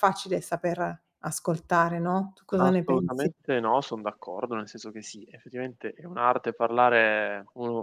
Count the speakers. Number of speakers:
two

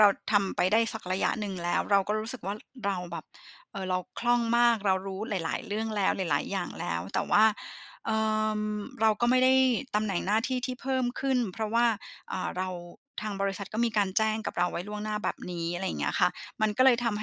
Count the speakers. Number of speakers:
one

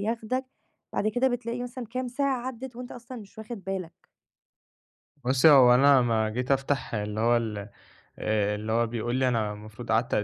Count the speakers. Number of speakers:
two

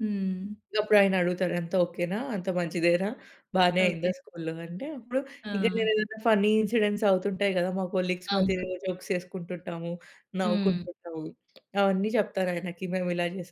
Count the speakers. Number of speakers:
two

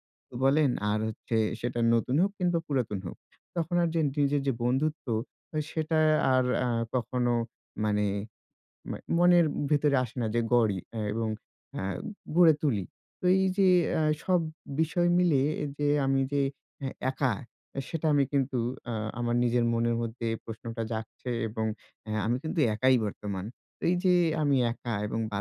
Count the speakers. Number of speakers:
one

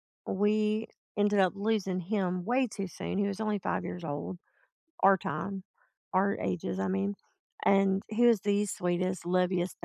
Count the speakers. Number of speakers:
one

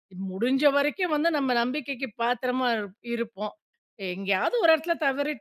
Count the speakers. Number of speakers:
one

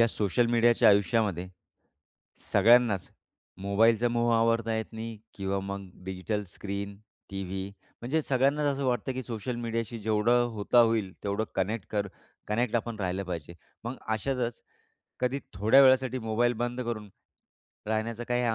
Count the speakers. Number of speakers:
one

